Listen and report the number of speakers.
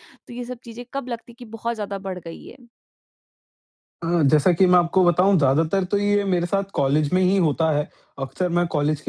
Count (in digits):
2